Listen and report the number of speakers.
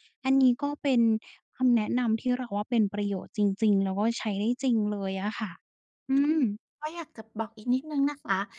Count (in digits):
2